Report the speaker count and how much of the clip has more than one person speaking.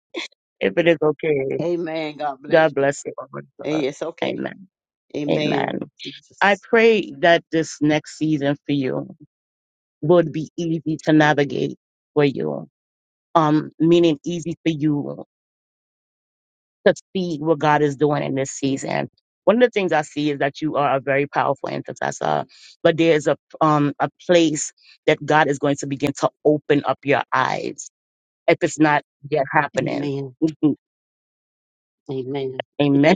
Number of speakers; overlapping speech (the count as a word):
two, about 5%